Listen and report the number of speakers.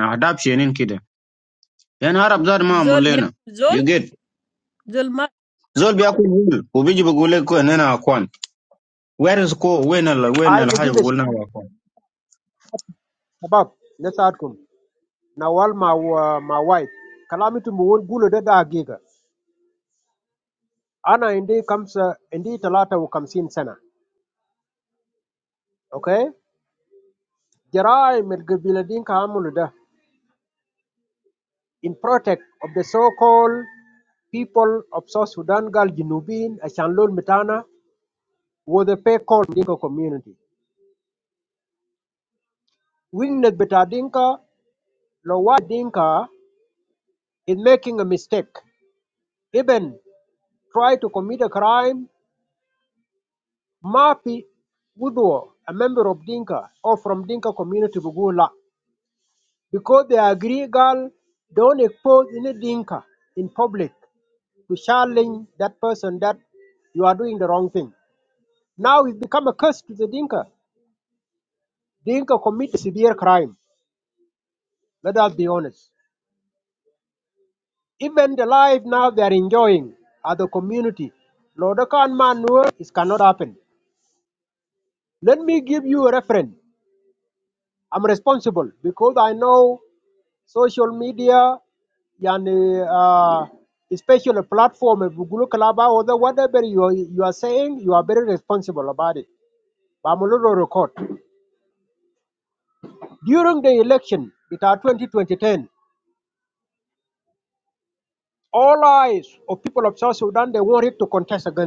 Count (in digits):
3